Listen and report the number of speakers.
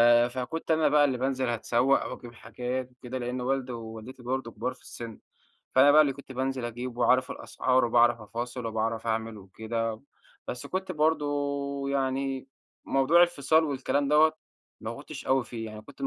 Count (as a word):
one